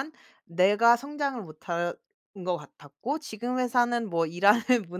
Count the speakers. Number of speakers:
1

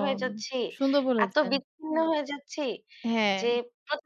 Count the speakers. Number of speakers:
2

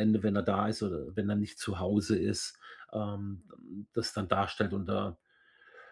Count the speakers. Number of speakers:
1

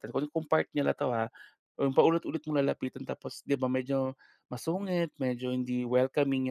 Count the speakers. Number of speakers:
1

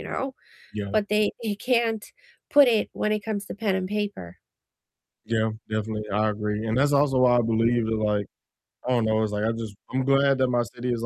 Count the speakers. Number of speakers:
2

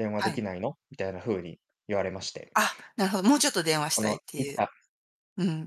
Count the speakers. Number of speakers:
2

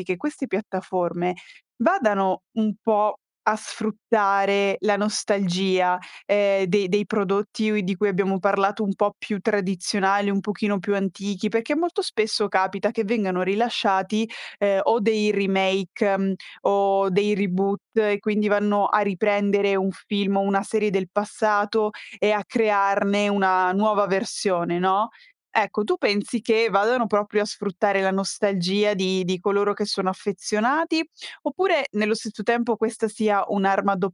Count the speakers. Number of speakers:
1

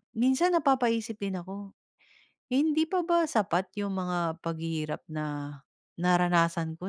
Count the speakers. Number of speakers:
1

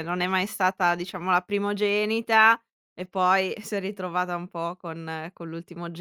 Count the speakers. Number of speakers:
1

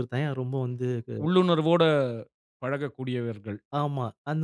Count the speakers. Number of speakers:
2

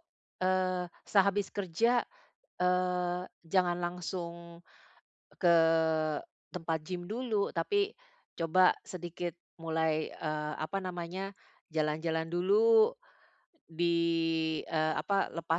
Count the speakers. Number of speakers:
1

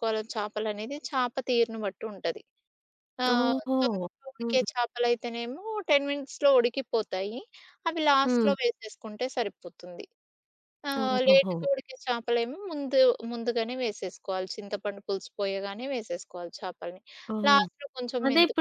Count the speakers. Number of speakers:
2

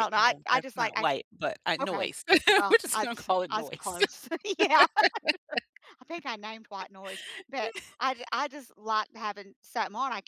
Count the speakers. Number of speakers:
2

